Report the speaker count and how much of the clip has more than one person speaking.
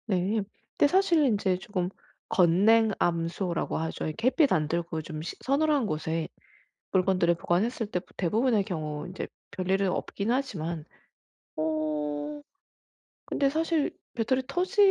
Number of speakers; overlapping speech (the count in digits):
1, no overlap